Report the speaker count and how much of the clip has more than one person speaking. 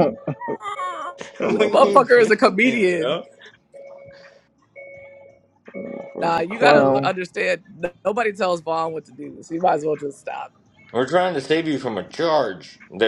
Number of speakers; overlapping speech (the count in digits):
3, about 19%